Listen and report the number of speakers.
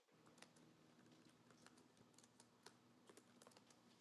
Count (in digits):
0